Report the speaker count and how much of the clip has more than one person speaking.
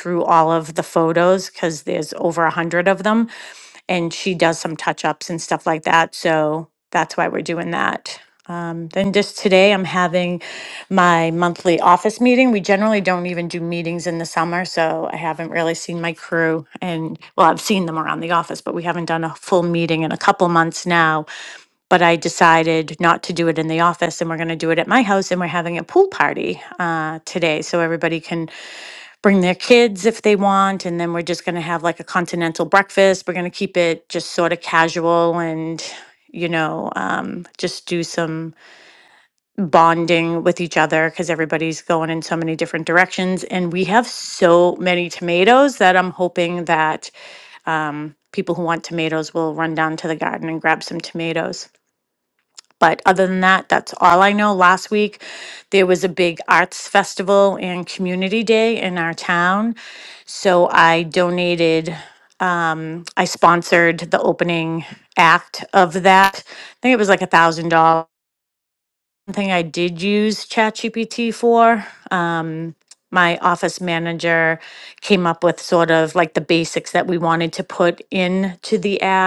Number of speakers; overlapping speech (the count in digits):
1, no overlap